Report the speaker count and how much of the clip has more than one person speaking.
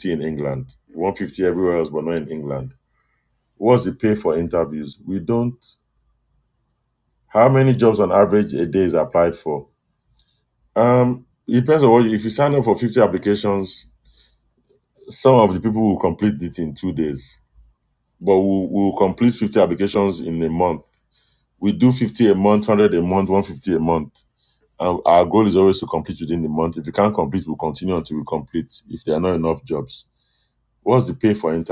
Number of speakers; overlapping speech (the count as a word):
one, no overlap